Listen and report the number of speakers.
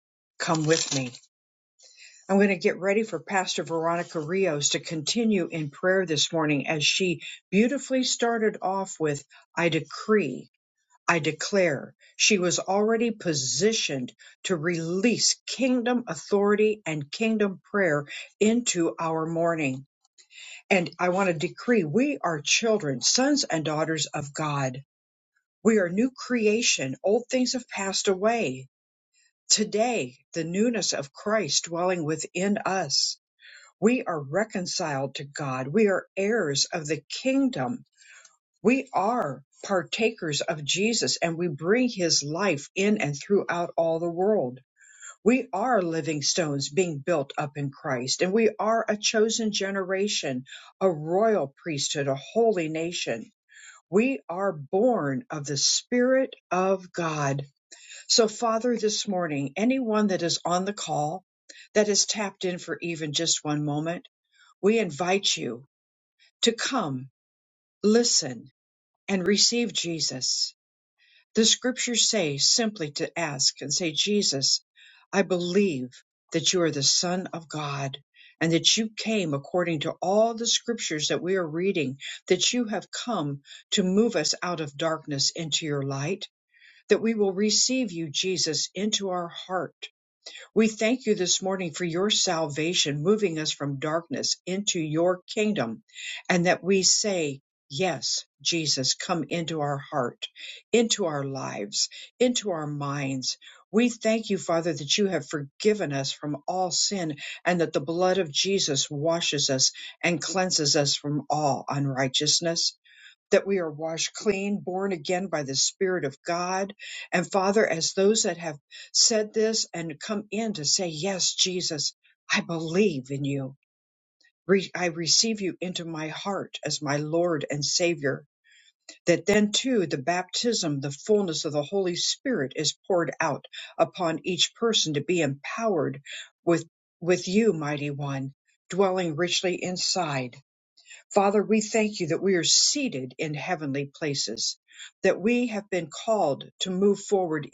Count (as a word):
one